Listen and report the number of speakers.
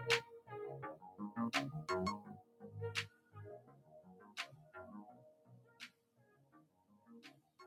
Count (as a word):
zero